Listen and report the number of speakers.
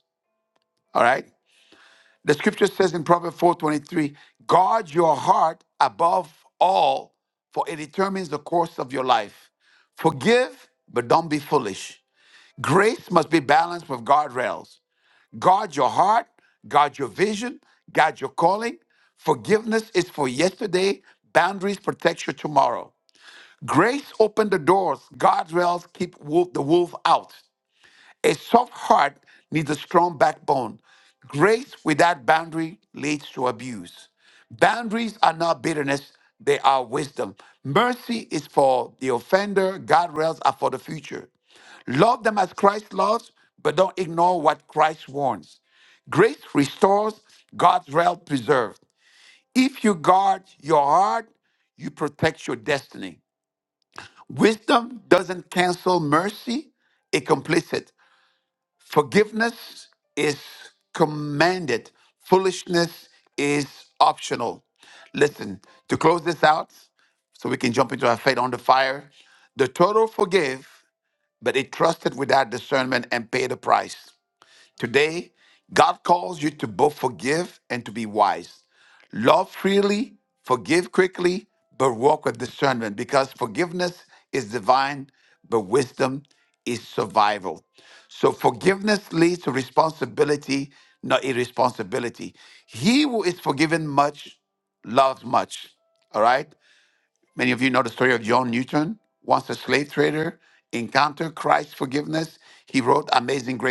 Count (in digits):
1